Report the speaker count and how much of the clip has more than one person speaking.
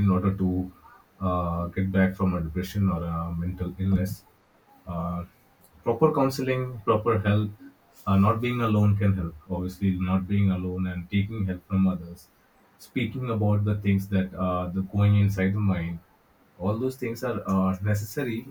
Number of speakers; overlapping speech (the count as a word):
one, no overlap